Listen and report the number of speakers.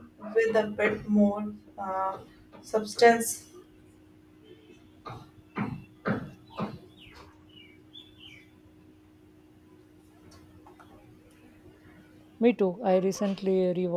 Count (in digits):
2